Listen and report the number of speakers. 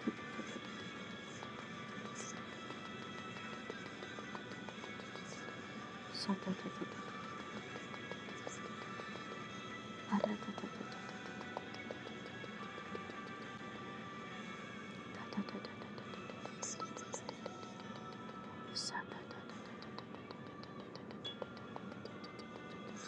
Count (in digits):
0